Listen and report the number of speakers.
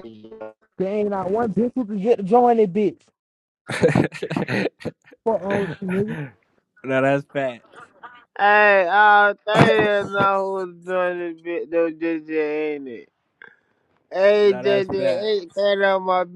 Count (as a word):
three